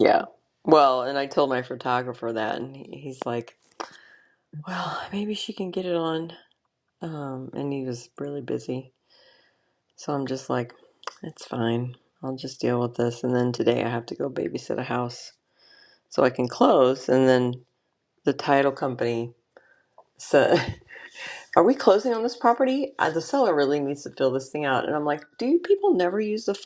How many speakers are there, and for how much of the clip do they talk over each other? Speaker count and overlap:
1, no overlap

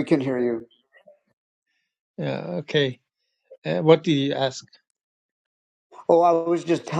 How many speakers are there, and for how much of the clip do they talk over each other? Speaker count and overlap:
2, no overlap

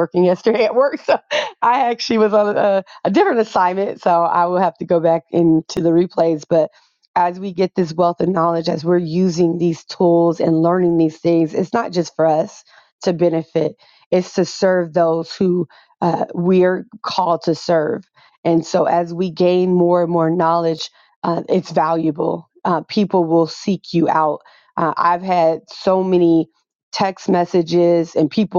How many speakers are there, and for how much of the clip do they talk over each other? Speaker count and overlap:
1, no overlap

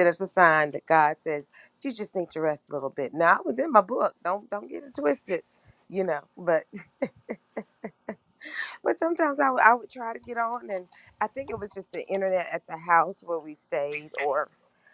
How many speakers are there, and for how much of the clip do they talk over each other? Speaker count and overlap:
1, no overlap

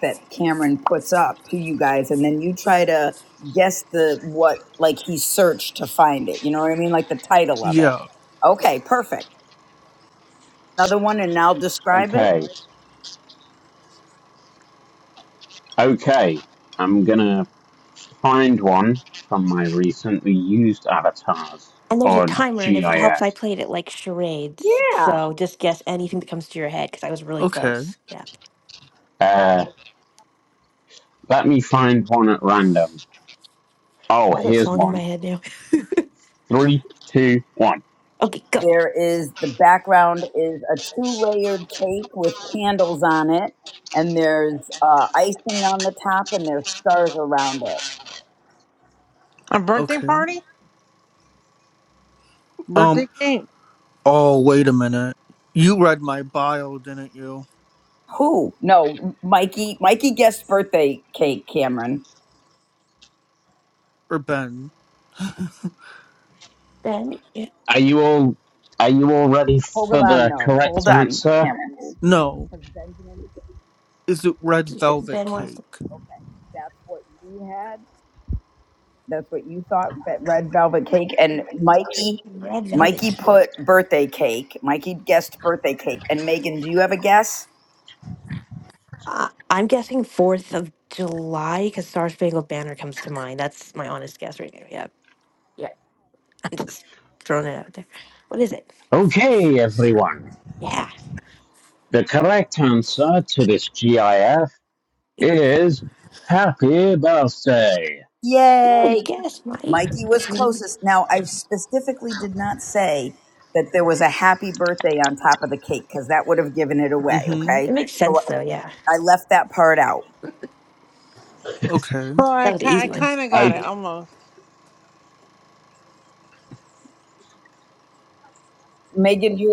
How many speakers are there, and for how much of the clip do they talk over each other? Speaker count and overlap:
5, about 8%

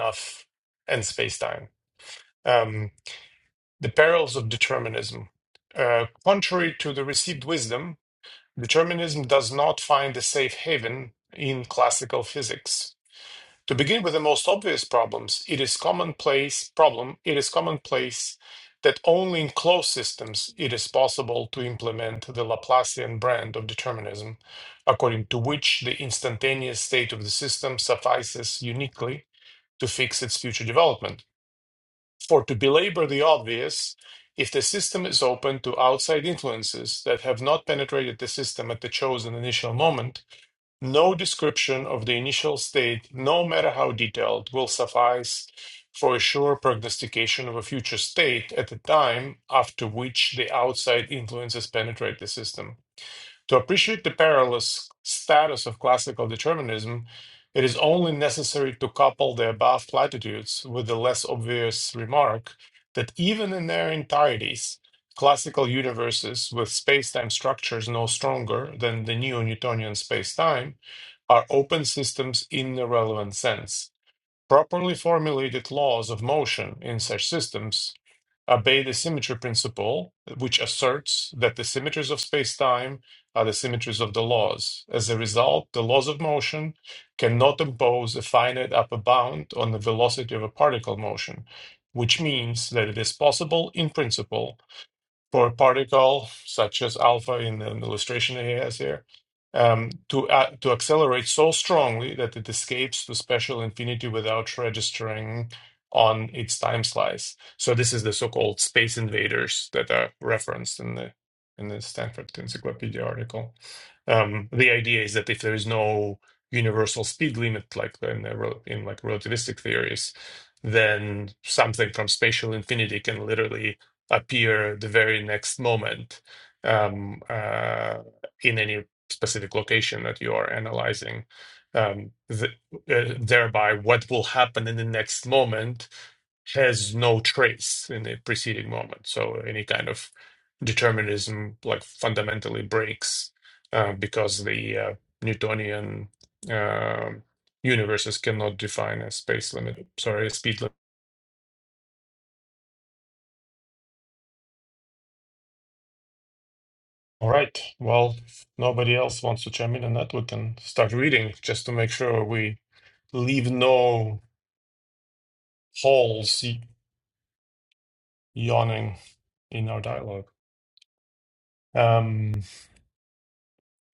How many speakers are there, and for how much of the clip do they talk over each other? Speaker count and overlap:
1, no overlap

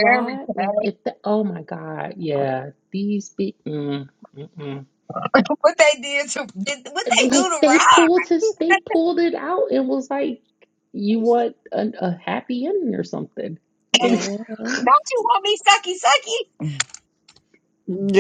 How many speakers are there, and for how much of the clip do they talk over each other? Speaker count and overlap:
3, about 10%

